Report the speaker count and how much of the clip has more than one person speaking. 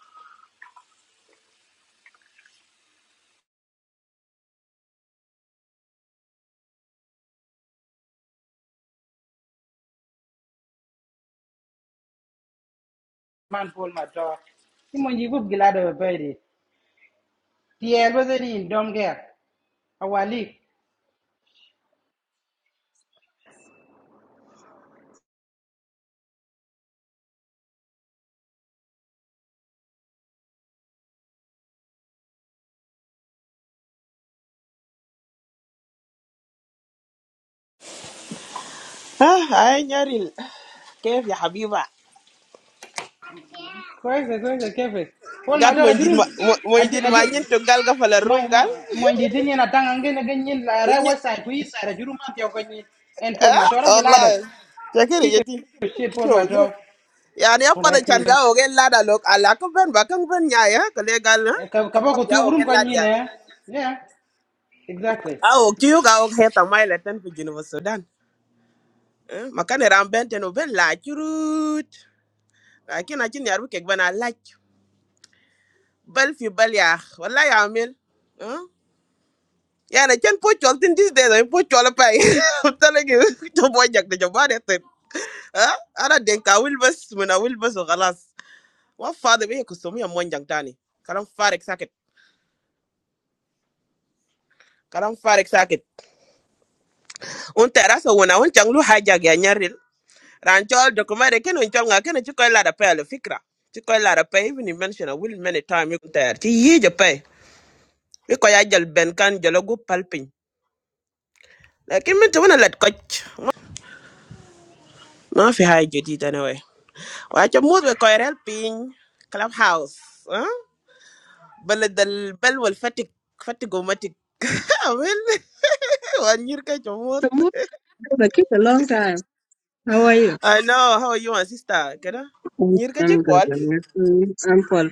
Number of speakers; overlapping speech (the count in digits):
3, about 4%